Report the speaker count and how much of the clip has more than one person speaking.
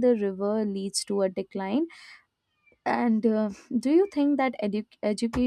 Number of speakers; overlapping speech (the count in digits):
1, no overlap